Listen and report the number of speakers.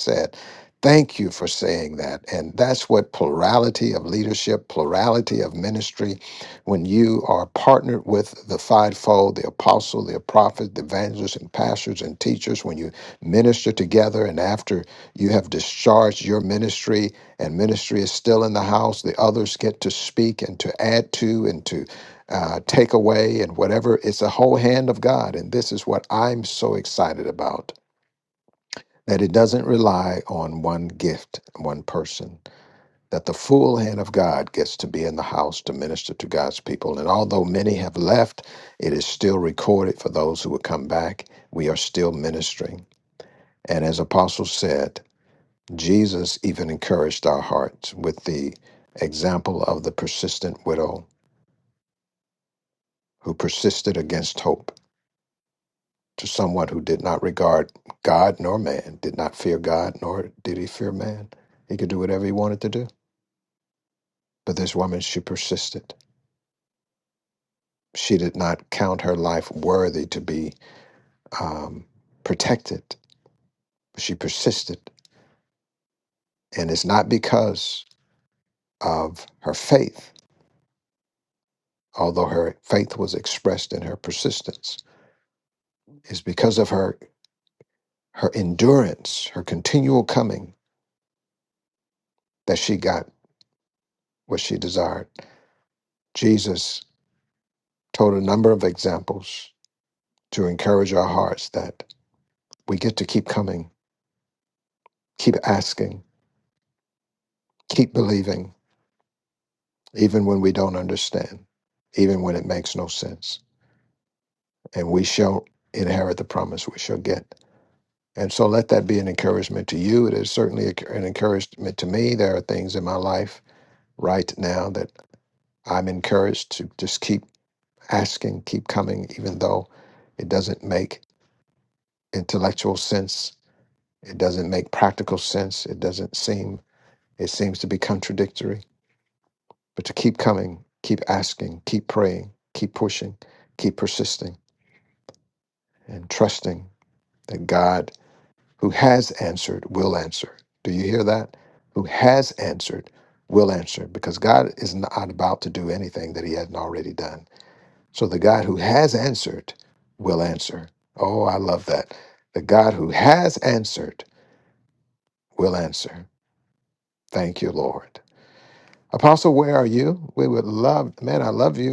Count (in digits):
1